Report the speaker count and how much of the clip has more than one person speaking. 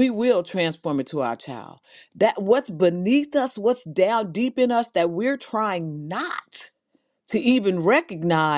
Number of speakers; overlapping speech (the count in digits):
1, no overlap